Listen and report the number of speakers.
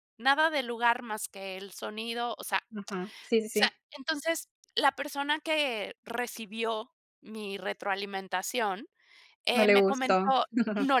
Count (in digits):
2